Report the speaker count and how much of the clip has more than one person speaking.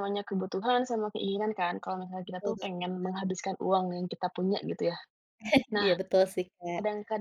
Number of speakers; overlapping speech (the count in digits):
2, about 6%